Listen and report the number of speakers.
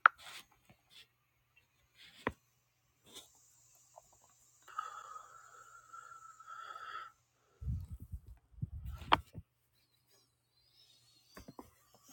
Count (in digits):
0